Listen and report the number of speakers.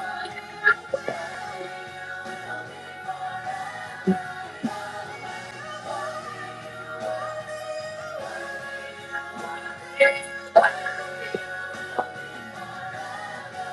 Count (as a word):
zero